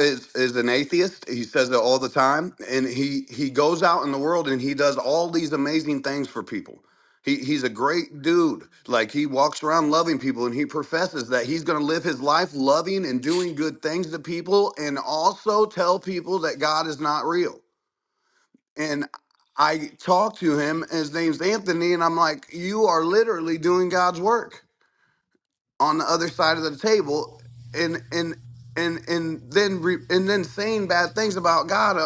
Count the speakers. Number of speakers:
one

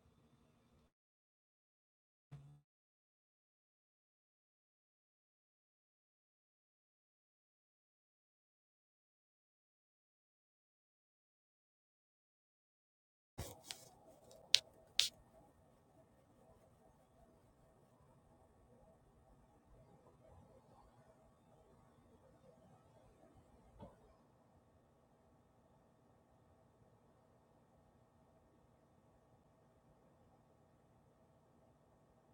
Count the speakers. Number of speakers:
zero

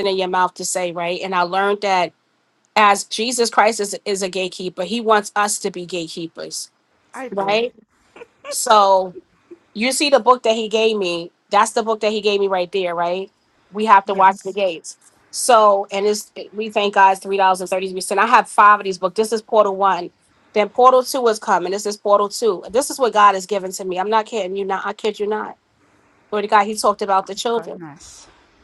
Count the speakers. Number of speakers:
two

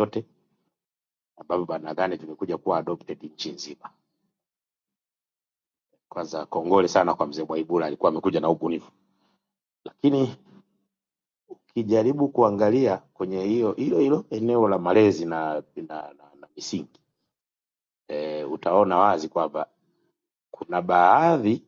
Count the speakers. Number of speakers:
one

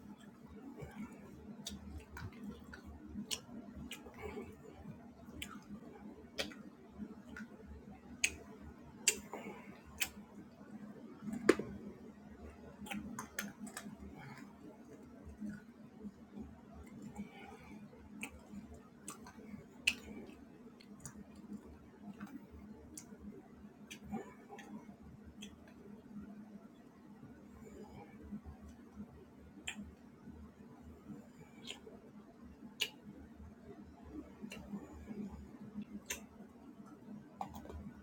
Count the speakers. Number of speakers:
zero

